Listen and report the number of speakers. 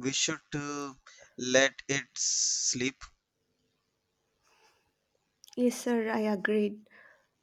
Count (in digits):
2